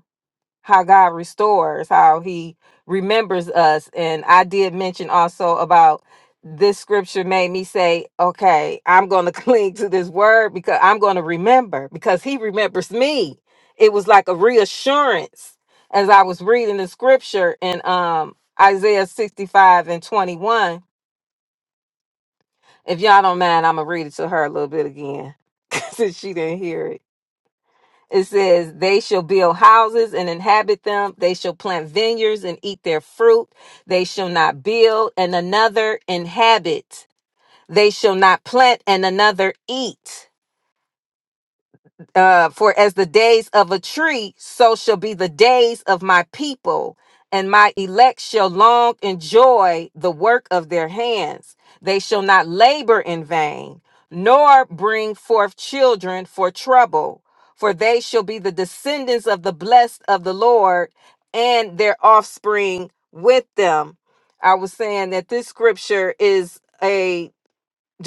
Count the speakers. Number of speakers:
one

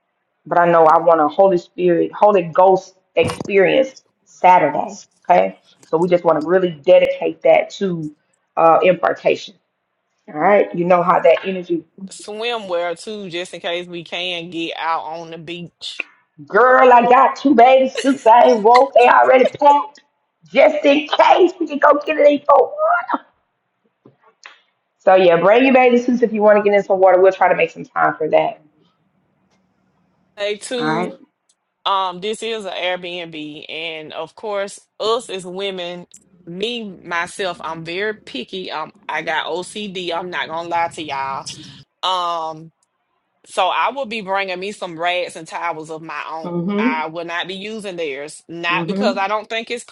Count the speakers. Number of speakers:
two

